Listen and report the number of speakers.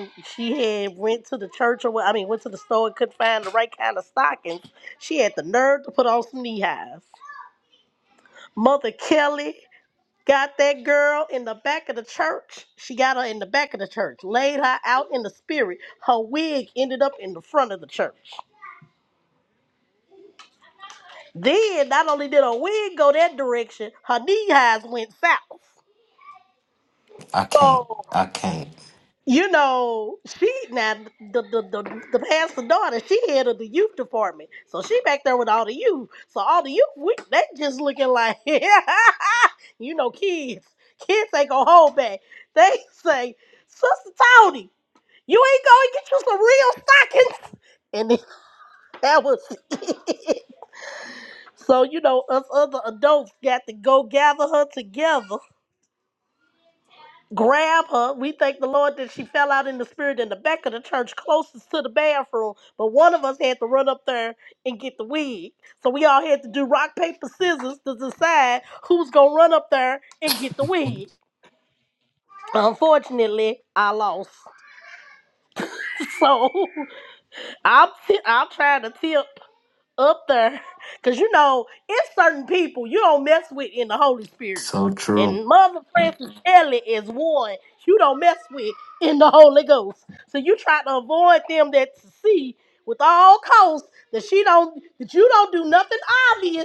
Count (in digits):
2